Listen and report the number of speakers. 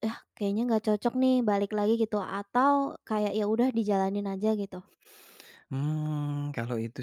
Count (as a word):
two